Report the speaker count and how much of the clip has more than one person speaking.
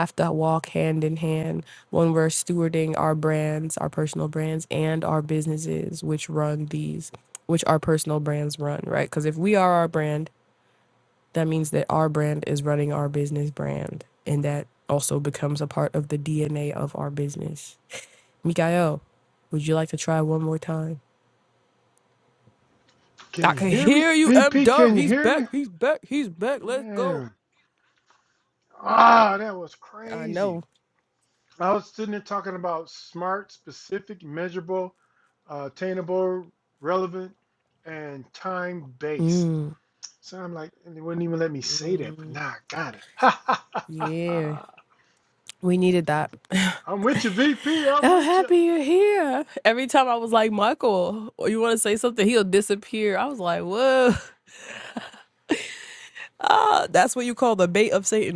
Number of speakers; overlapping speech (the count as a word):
two, about 6%